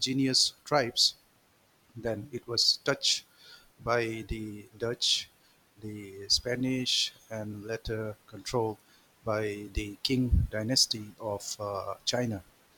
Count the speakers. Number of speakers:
1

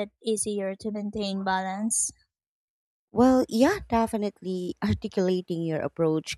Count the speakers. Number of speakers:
2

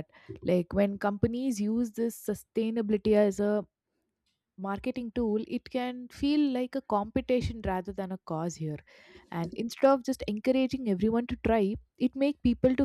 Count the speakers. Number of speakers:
1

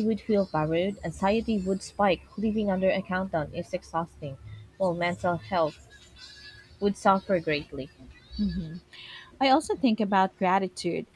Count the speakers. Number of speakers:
2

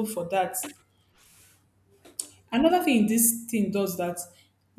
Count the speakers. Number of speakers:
1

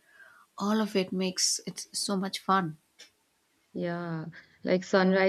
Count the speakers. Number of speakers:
2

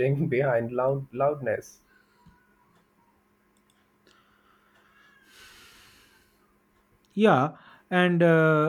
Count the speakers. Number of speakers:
2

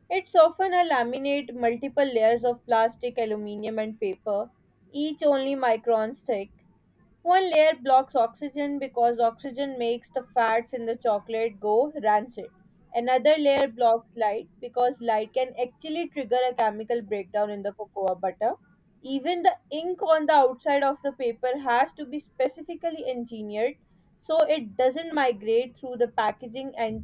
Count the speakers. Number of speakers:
1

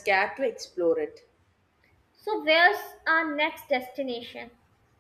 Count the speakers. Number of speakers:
2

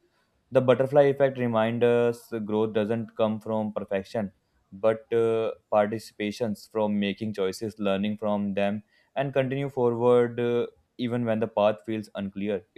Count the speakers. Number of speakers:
1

